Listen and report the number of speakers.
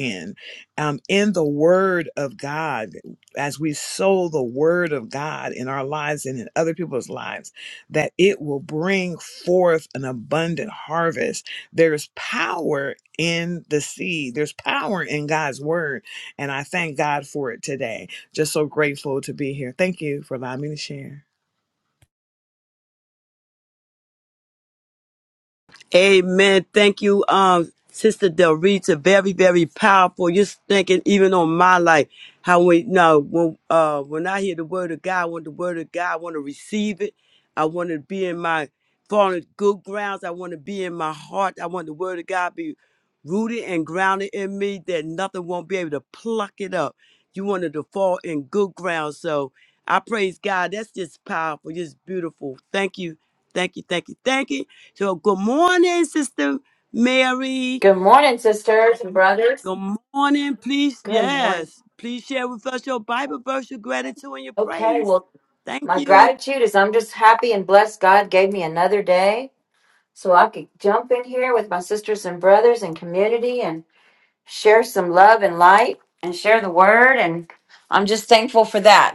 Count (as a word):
three